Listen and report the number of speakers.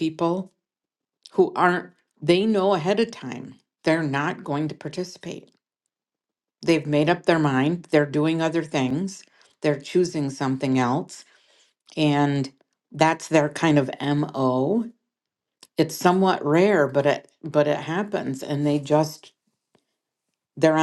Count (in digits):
1